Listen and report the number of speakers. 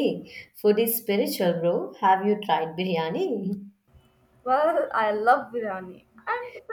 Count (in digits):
2